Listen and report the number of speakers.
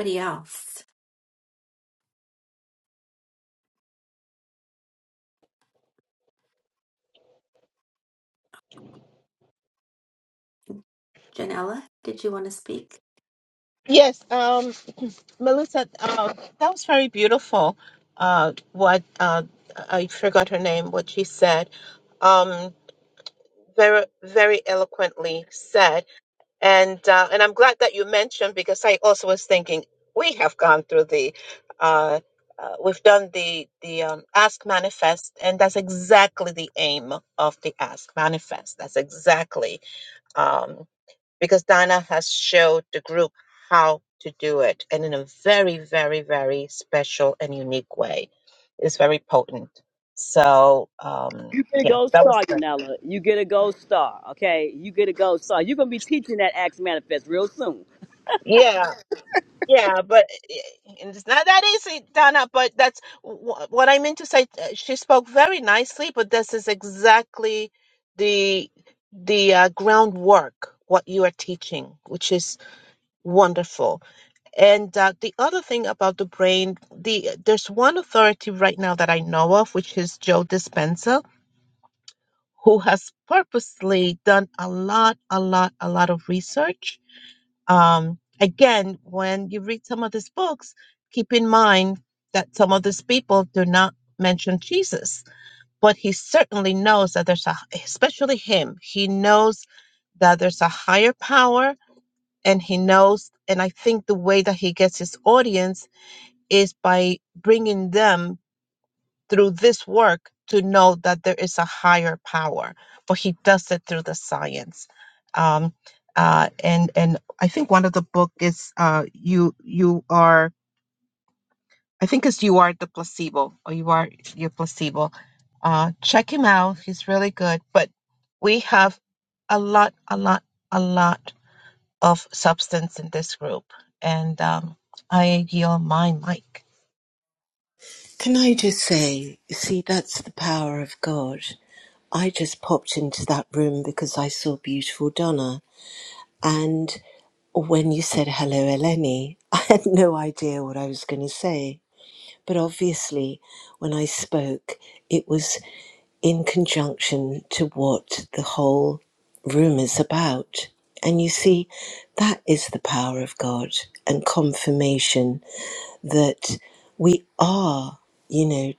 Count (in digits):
4